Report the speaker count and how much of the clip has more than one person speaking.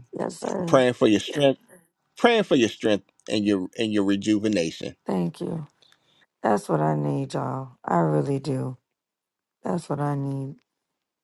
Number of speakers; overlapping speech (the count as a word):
two, about 2%